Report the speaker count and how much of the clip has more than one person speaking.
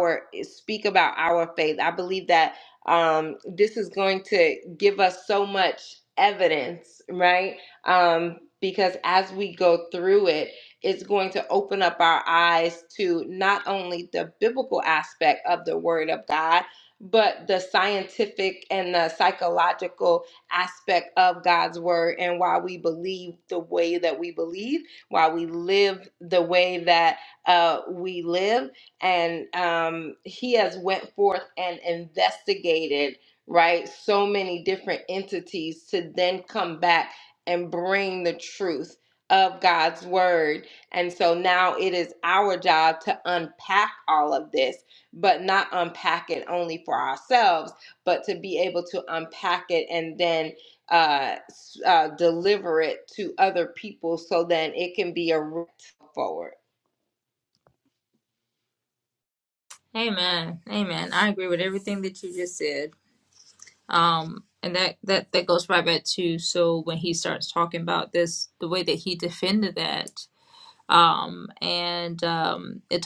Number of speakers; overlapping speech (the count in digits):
2, no overlap